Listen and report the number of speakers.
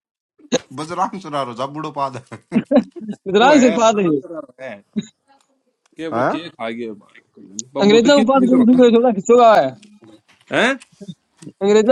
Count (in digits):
3